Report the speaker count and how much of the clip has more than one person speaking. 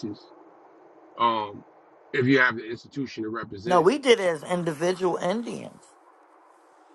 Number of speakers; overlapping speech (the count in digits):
2, about 3%